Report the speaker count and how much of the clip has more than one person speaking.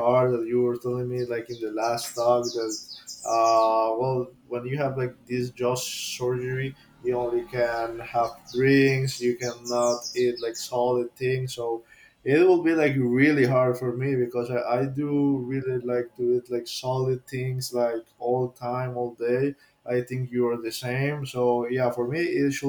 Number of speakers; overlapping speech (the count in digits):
1, no overlap